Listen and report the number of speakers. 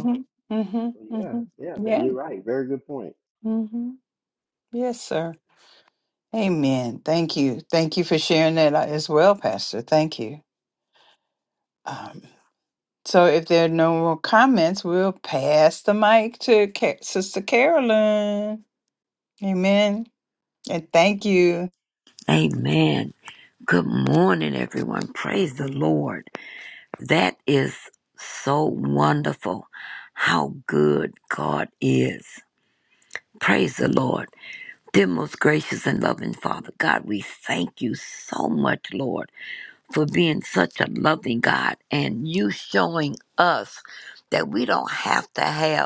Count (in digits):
3